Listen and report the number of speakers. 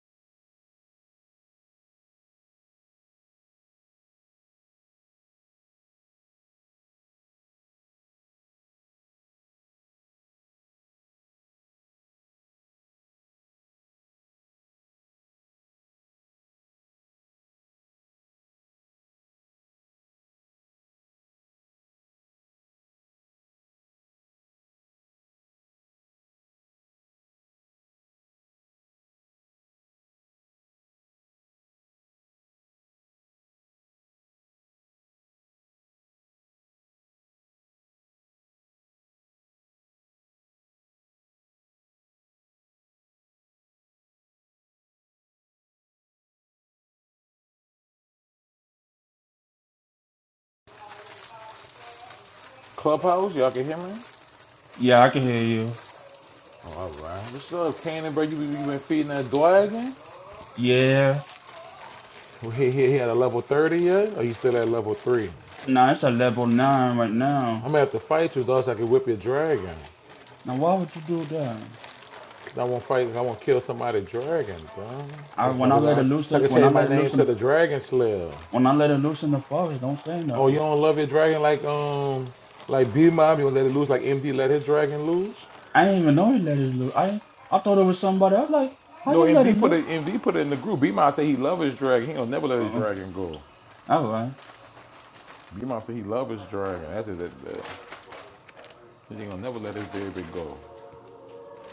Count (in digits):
2